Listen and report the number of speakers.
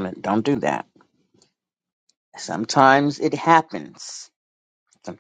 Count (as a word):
one